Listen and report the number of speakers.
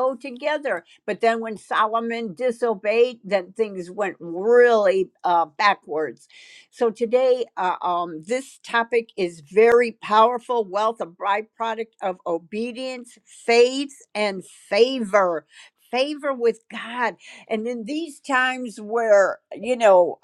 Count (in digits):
1